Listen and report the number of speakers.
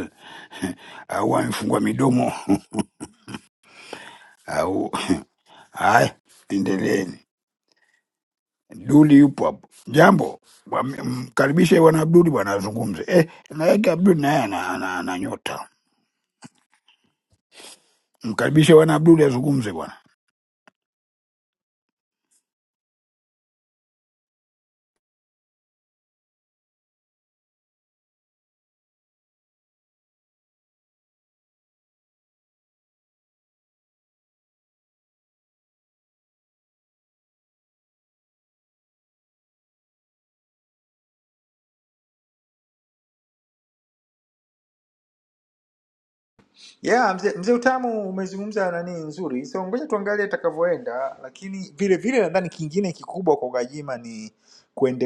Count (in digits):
2